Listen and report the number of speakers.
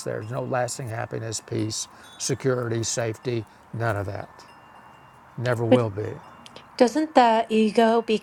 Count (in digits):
2